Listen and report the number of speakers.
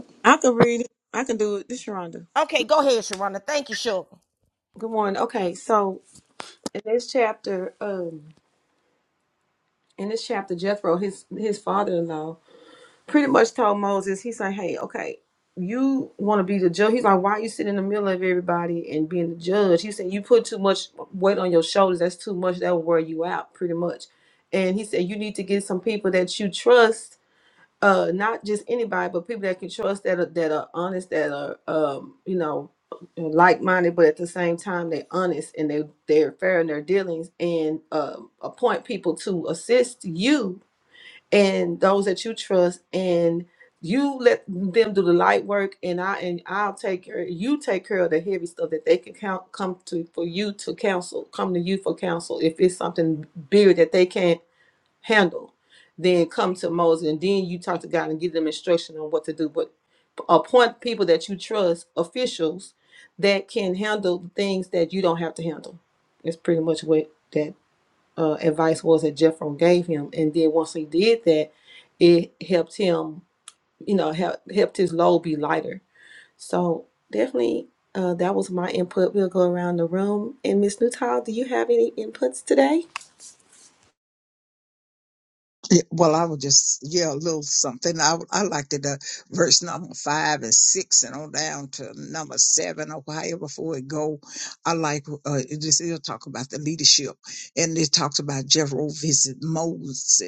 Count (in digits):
3